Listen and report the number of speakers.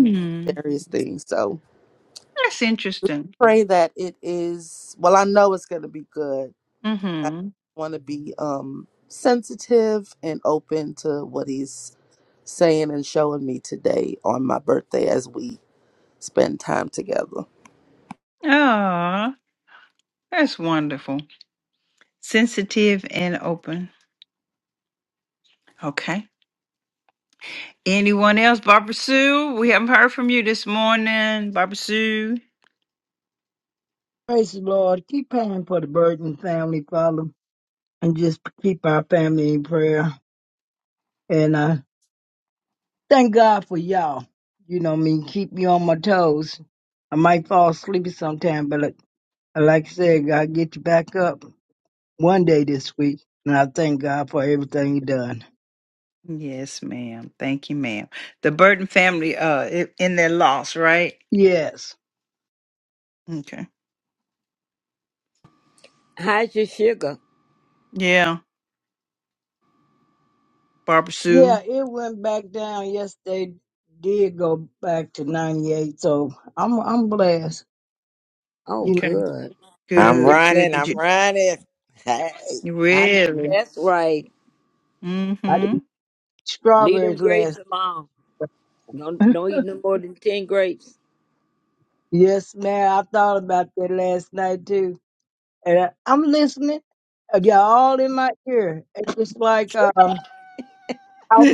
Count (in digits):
5